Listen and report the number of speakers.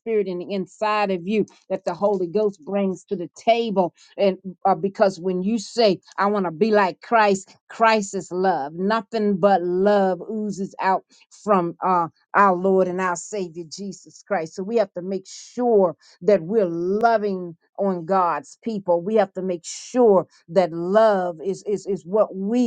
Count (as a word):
one